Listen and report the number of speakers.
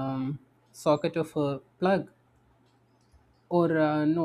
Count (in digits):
1